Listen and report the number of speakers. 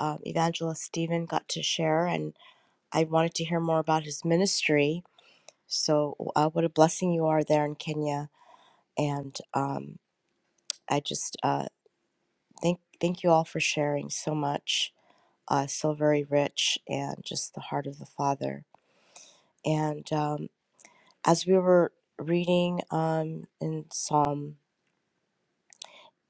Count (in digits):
1